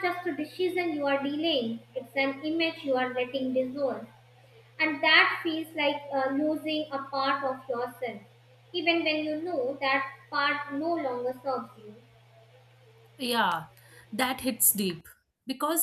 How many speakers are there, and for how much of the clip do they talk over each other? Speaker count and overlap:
two, no overlap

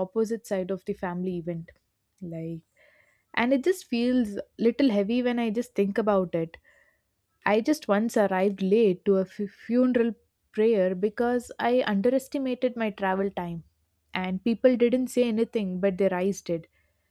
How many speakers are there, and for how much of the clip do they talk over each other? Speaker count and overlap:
one, no overlap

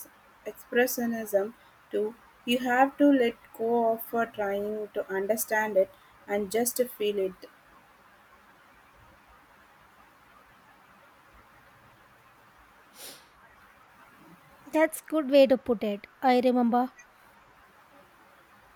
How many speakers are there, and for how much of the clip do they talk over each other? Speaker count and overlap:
two, no overlap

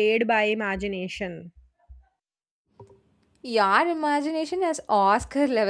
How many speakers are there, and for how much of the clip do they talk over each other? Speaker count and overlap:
two, no overlap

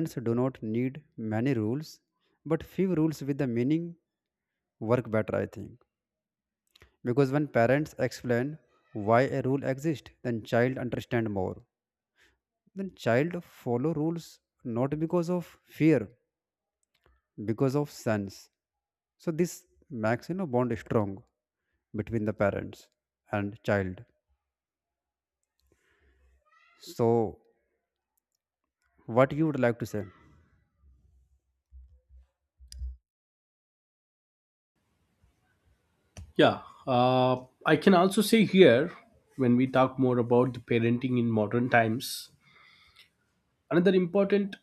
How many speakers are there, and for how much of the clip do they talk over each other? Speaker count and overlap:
two, no overlap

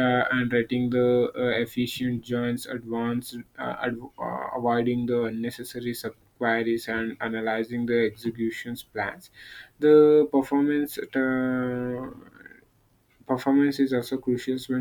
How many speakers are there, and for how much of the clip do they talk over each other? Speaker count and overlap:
one, no overlap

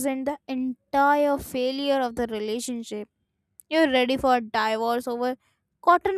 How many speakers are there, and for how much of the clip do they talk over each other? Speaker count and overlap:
one, no overlap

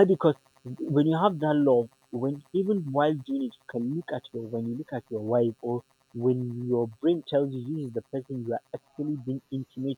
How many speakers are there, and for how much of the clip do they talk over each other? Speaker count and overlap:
one, no overlap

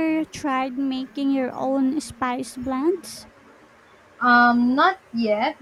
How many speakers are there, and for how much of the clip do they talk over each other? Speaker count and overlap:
two, no overlap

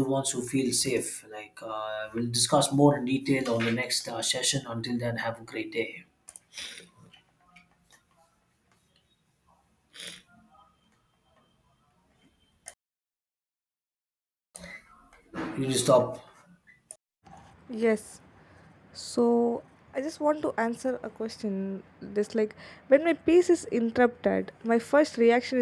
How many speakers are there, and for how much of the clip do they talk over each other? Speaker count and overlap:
two, no overlap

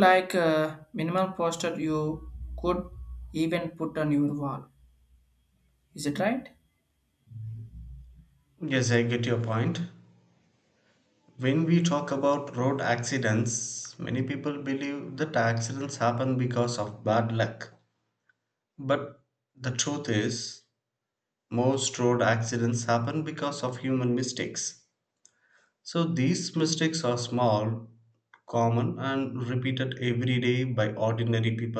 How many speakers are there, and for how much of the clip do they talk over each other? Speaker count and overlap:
two, no overlap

